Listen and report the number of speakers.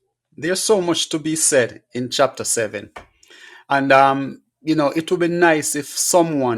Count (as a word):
one